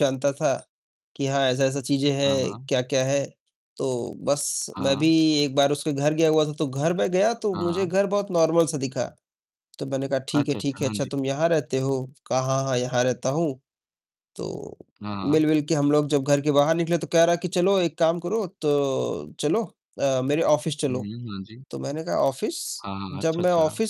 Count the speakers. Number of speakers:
two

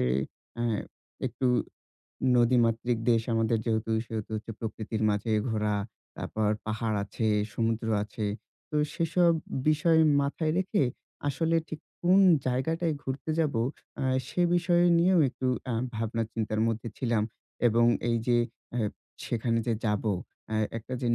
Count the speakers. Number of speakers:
one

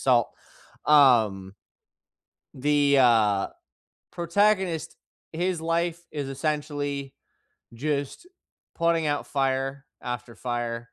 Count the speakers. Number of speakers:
one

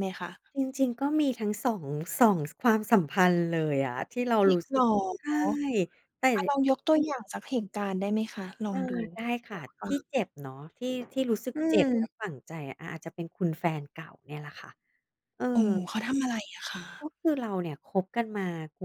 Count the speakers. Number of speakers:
two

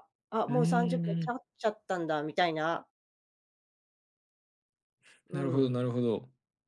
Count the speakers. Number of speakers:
two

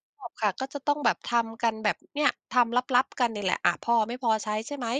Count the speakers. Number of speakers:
one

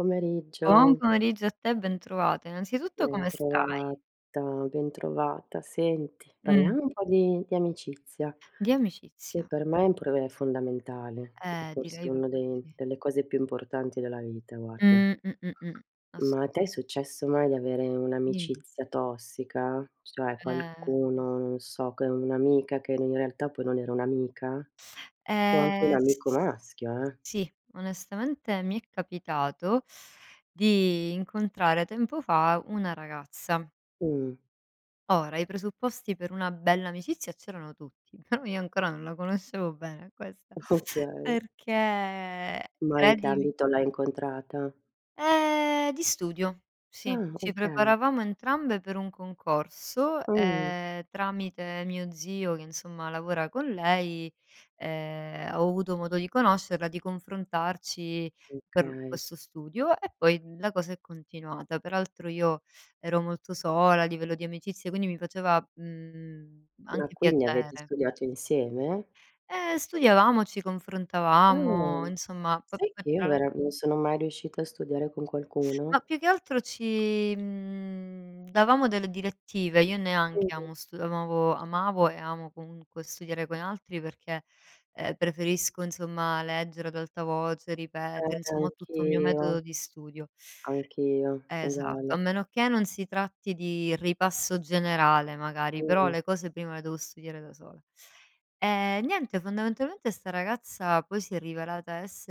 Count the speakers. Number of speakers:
two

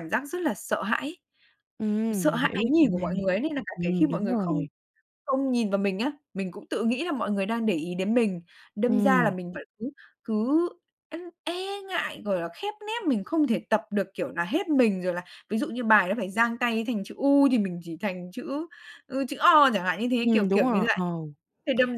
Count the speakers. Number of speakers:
two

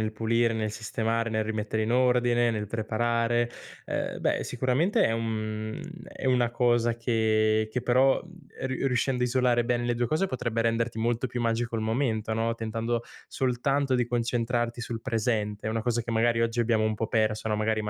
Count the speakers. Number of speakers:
one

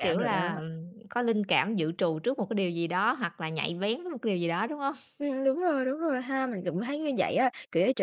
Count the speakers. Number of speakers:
two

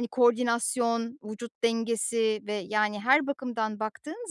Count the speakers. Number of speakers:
one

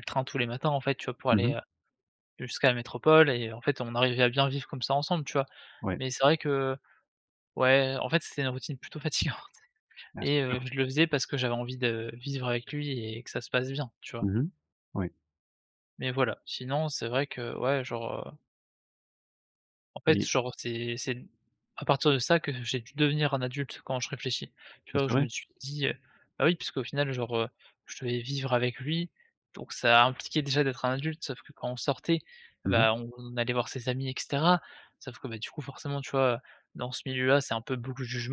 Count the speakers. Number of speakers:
two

